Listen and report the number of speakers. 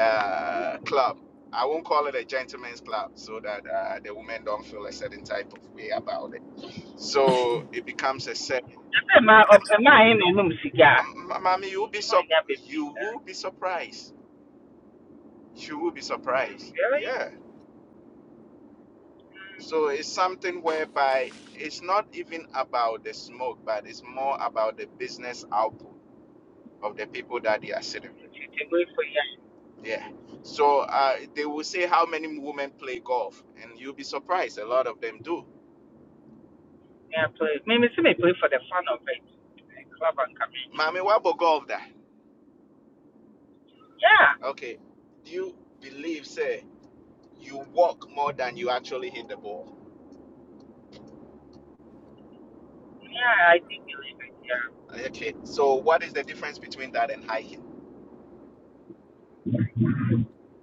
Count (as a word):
two